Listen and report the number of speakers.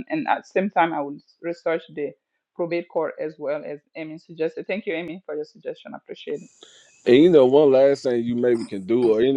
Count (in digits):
2